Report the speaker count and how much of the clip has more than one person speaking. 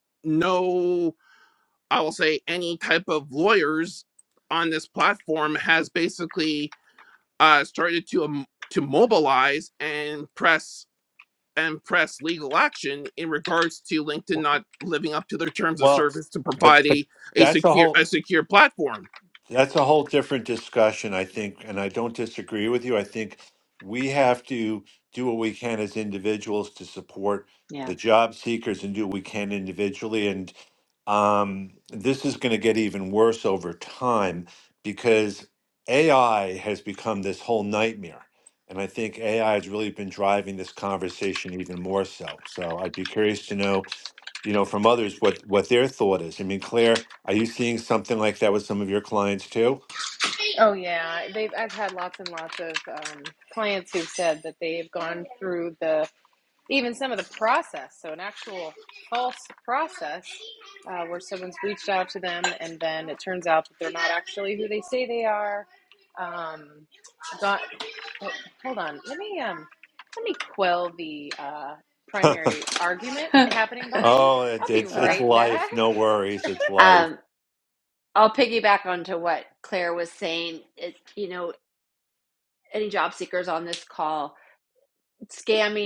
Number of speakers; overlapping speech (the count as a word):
four, about 4%